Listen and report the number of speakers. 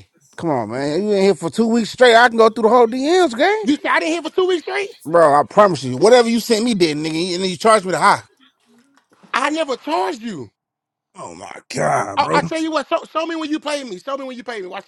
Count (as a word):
two